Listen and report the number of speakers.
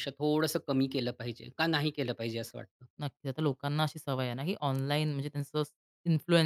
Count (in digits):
2